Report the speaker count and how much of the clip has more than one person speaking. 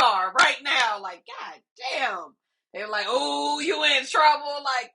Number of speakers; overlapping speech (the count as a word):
one, no overlap